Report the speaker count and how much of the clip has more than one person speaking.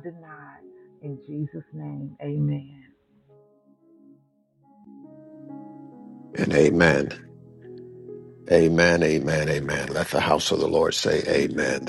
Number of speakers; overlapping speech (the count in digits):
2, no overlap